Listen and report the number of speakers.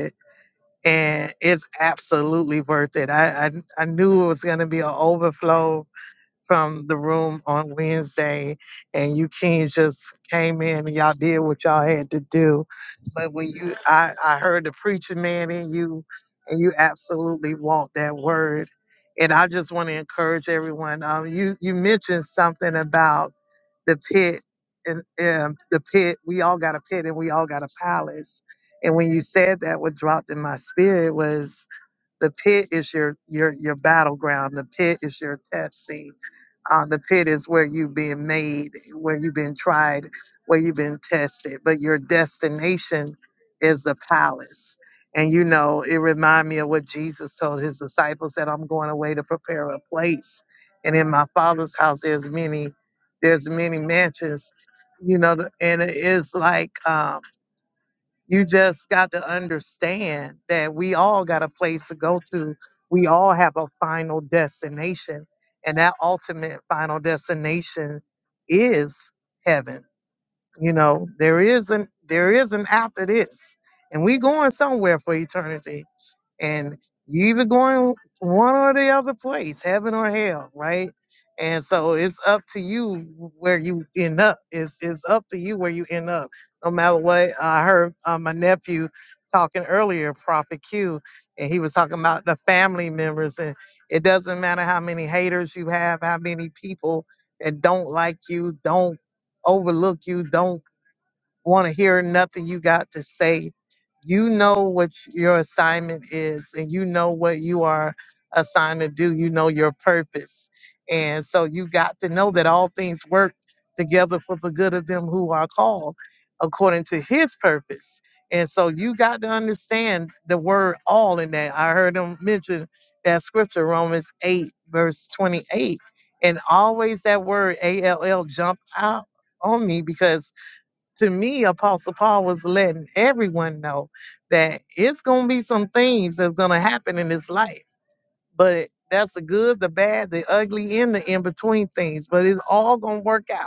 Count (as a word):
one